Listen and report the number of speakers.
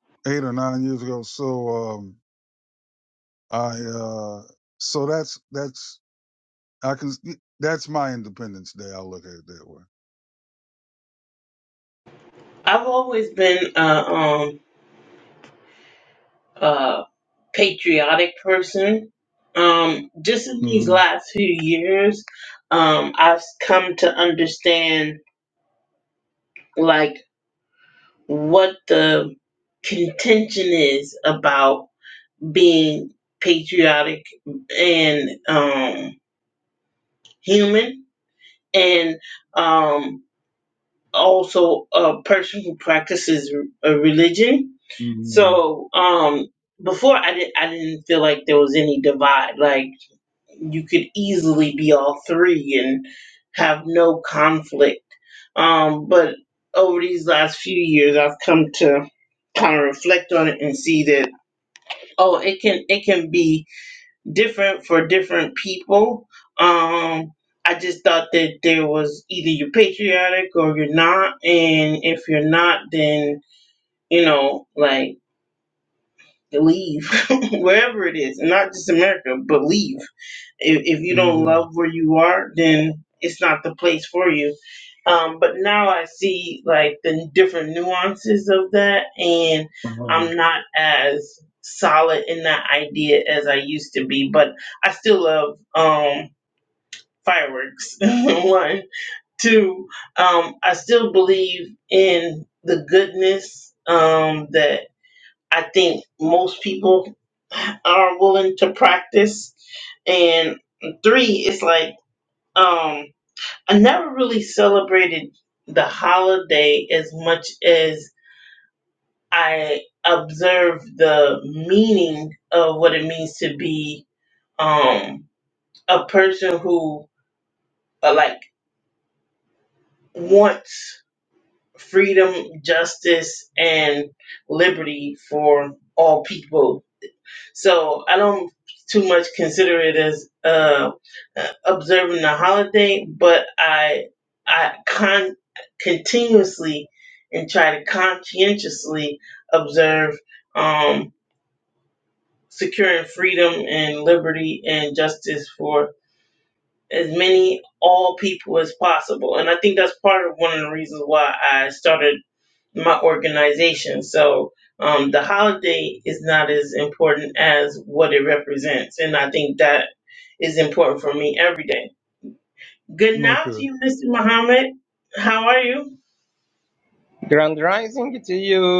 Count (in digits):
3